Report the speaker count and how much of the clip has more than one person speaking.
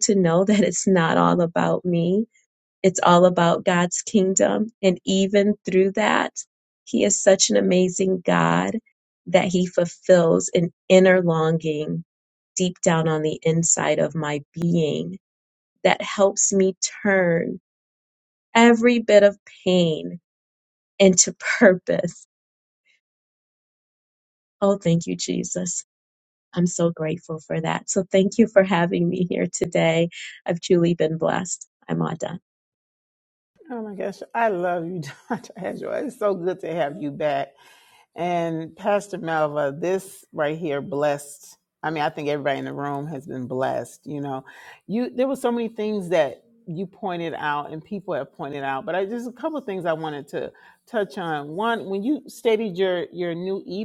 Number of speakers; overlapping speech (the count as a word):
two, no overlap